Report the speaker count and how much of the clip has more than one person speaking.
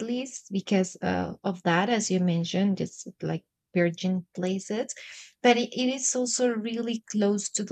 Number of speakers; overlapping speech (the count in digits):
1, no overlap